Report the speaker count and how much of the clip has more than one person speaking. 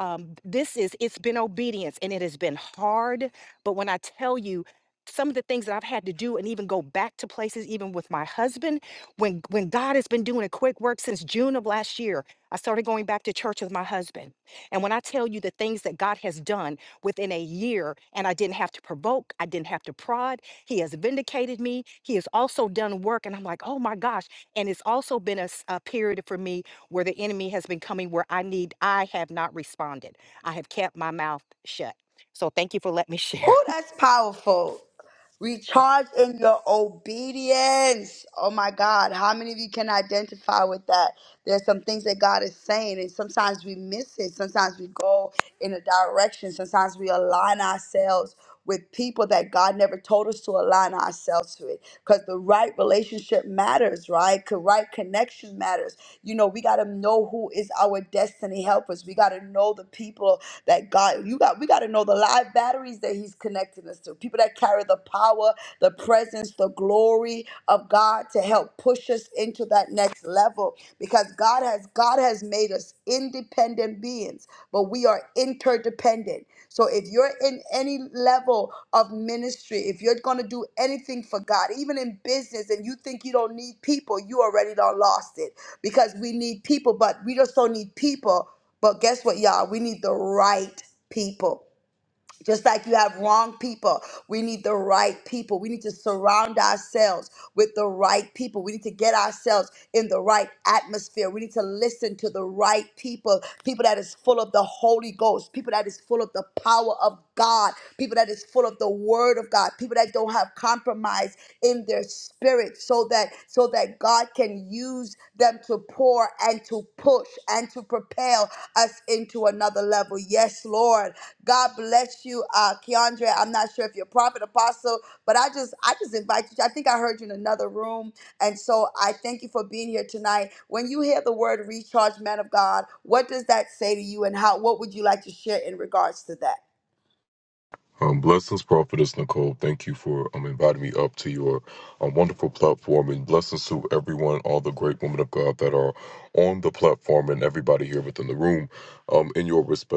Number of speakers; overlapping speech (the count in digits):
3, under 1%